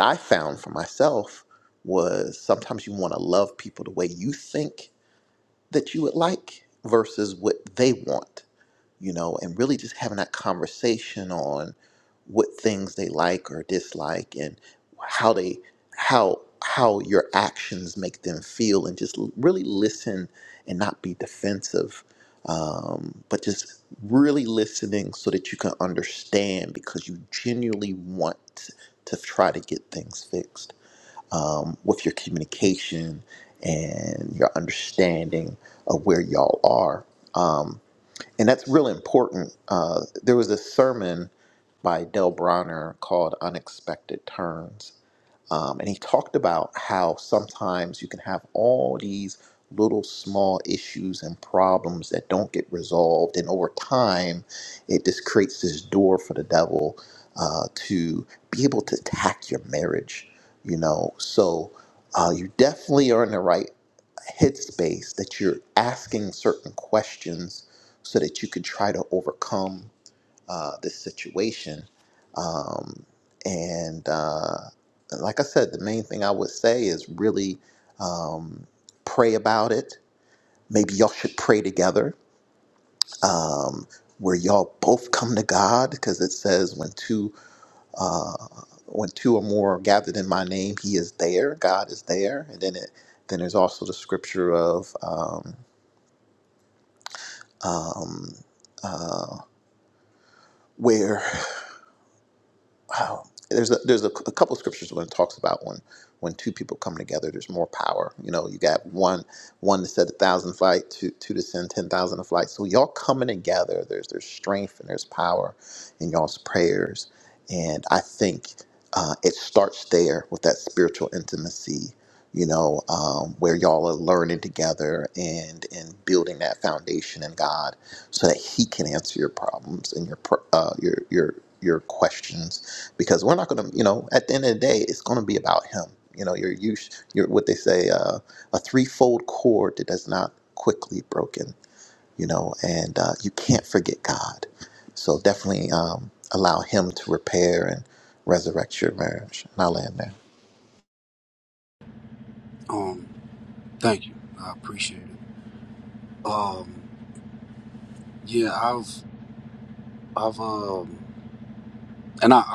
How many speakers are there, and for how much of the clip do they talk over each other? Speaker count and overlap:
two, no overlap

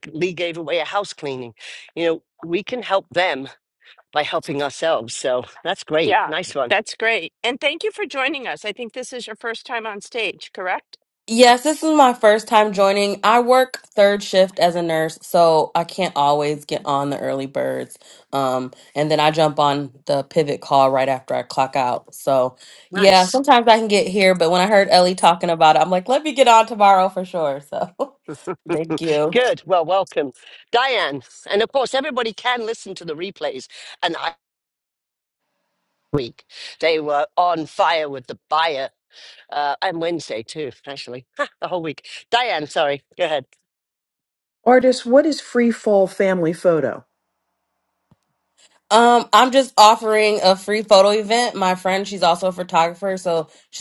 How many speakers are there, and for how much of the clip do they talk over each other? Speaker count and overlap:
four, about 1%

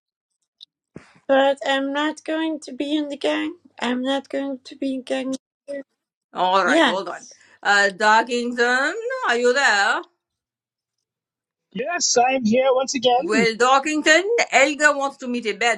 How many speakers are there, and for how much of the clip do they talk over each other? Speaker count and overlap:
three, about 3%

